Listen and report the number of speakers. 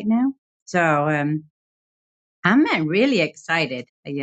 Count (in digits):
1